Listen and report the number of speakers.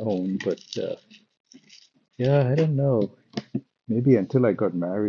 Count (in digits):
1